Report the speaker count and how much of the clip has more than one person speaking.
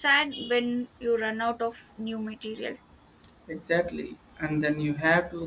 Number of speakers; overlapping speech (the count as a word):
two, no overlap